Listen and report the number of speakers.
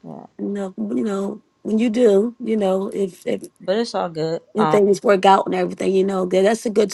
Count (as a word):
two